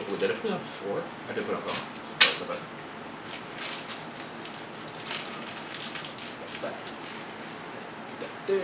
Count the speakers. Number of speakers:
one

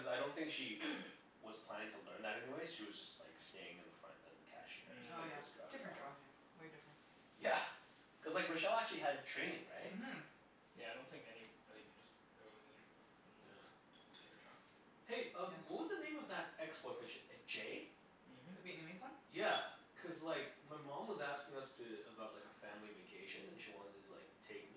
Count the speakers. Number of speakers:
three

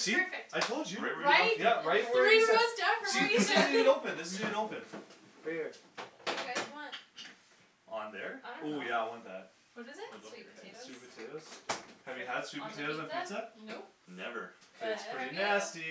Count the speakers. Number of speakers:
four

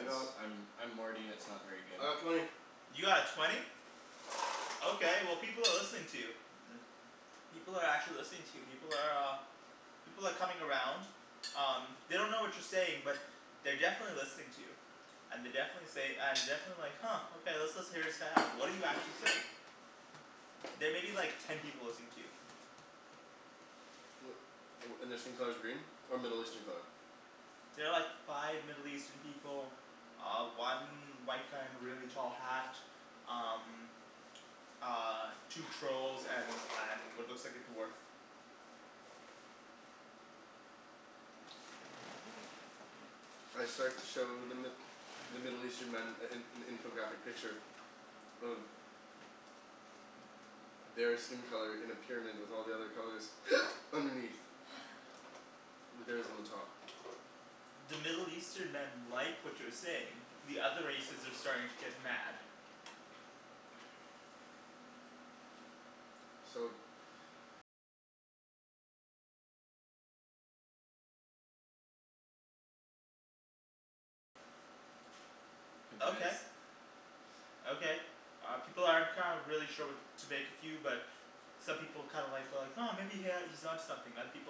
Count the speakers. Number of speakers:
three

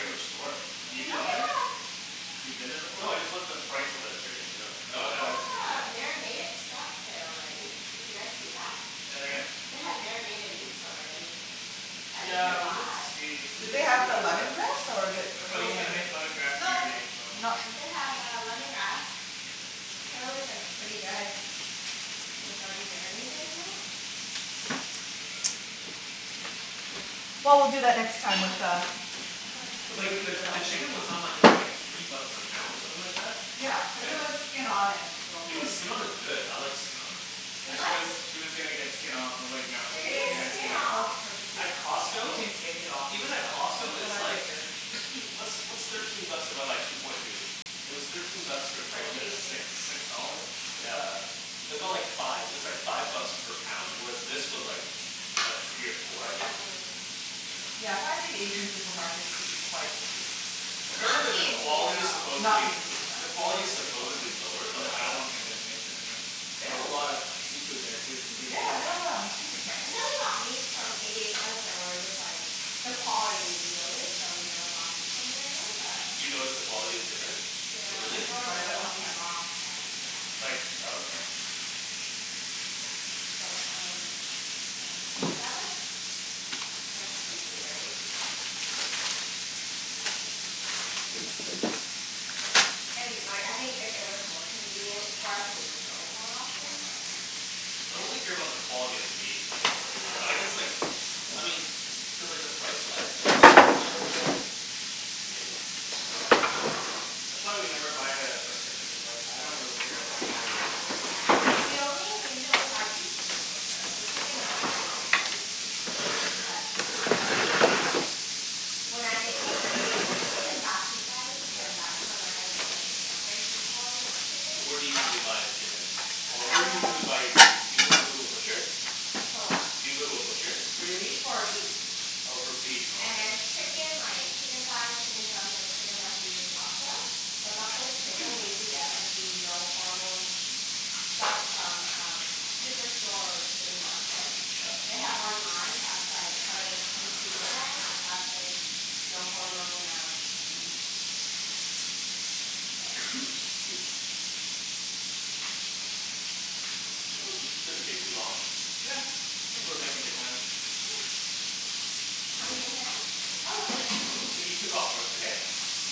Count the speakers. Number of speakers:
four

